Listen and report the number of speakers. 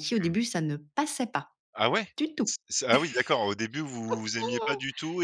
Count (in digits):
2